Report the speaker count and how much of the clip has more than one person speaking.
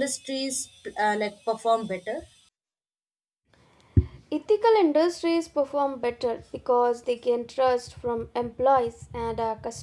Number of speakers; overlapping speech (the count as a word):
two, no overlap